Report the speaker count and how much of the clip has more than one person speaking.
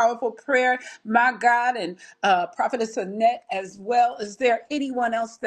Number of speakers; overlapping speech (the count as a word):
one, no overlap